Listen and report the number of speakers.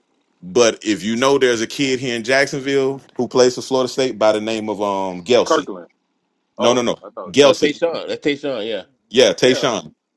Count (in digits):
3